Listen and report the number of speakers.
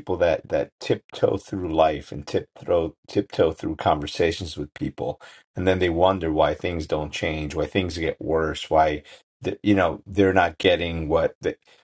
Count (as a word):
one